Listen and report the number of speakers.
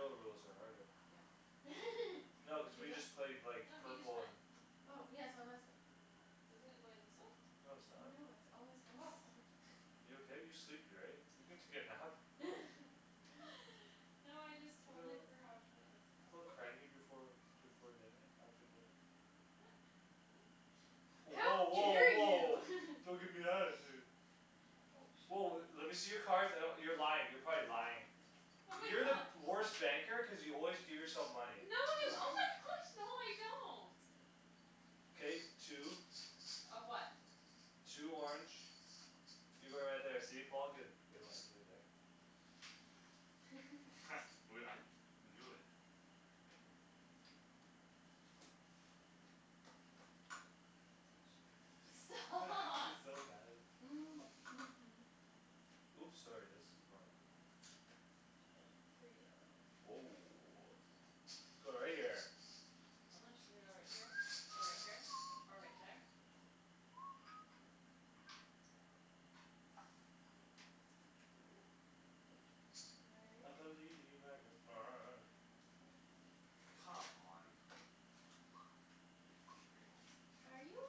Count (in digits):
4